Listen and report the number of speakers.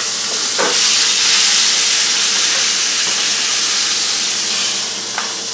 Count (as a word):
zero